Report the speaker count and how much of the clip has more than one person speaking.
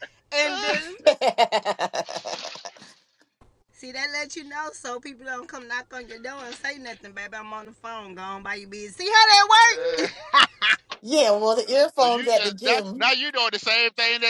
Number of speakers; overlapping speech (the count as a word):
three, about 16%